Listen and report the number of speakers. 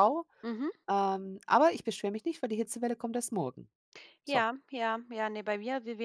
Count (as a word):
two